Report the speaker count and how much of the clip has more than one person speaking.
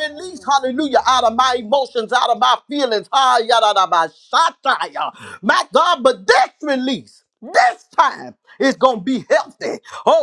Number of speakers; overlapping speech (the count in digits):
1, no overlap